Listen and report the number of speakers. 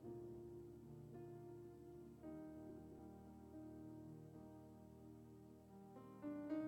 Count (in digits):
0